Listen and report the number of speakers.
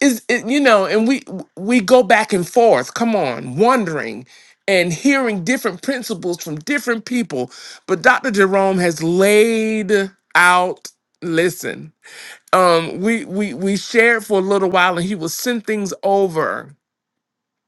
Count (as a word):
one